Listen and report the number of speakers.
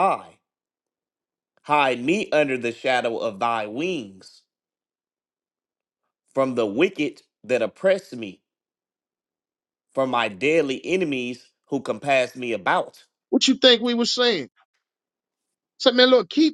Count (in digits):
2